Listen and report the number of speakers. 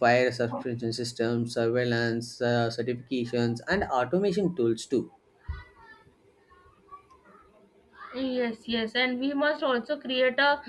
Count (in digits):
2